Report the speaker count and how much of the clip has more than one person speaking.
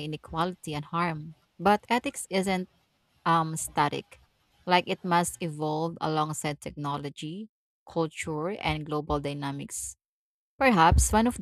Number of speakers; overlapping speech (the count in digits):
1, no overlap